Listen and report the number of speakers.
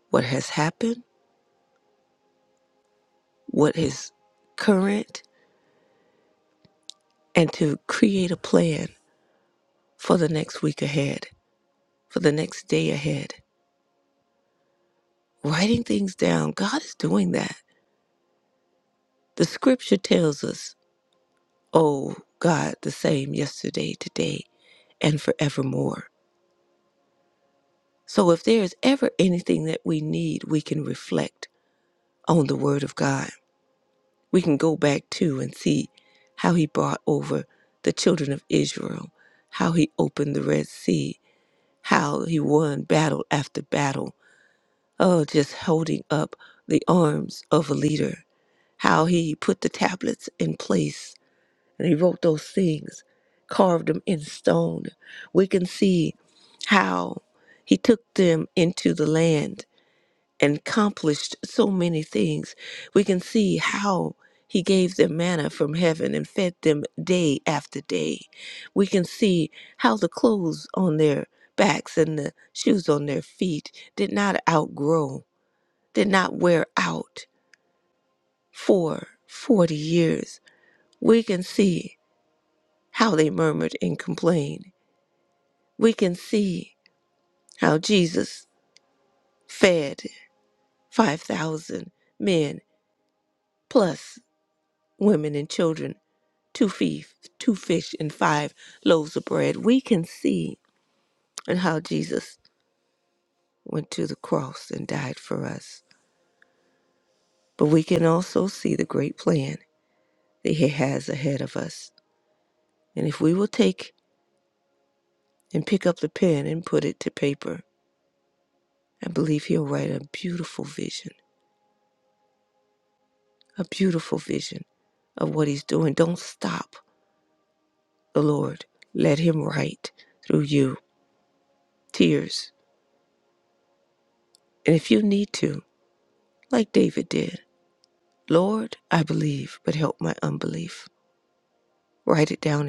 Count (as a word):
one